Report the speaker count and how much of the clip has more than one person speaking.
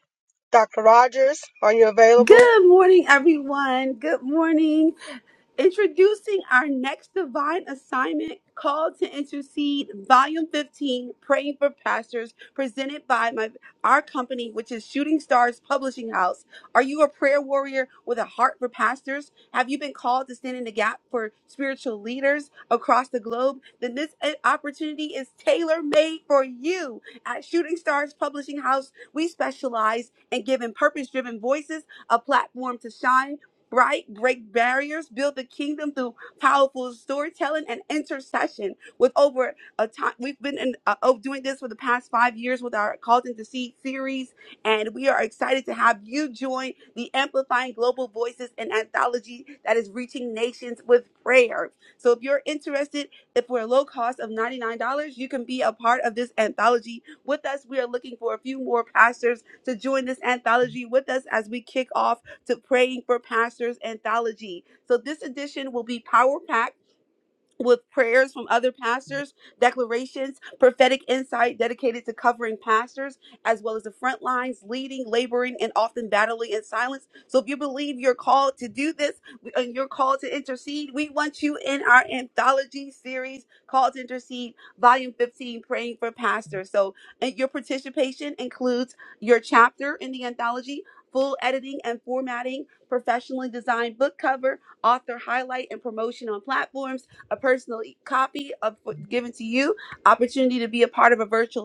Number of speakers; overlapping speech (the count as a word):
two, under 1%